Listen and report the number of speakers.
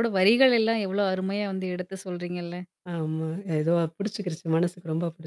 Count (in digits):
2